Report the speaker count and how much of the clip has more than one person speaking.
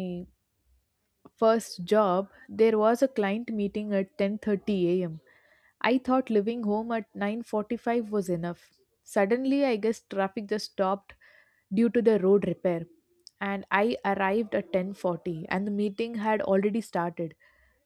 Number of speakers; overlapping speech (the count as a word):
one, no overlap